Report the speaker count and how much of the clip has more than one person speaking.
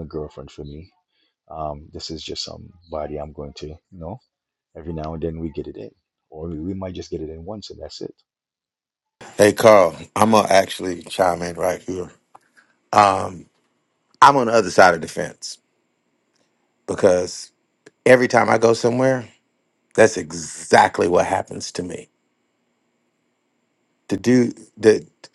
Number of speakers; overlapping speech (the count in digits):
2, no overlap